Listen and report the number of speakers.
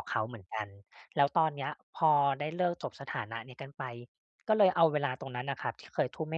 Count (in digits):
1